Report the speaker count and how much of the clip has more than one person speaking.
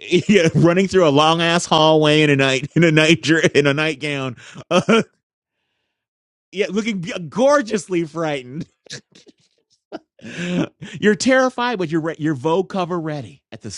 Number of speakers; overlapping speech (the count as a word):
one, no overlap